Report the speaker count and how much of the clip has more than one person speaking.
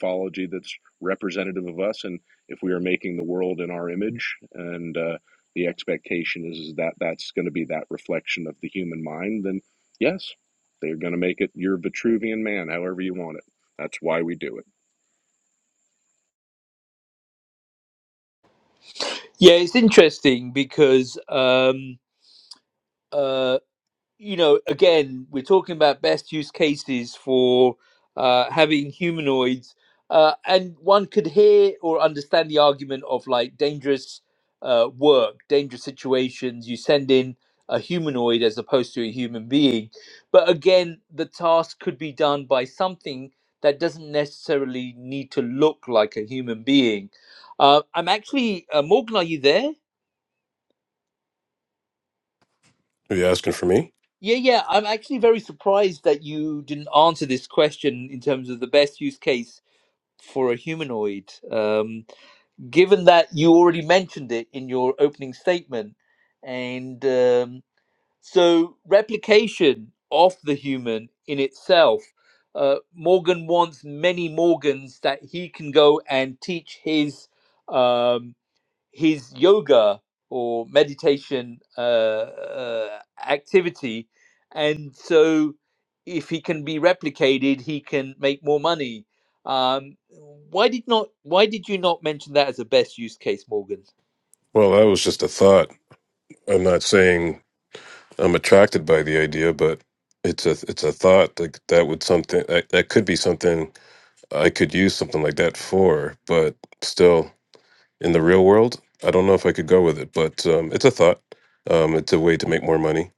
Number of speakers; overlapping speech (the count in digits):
3, no overlap